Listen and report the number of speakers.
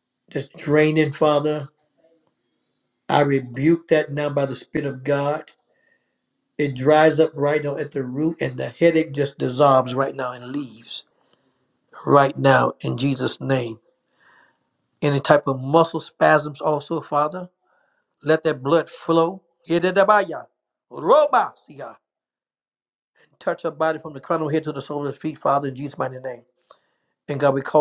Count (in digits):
1